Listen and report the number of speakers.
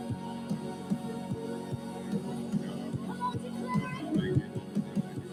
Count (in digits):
0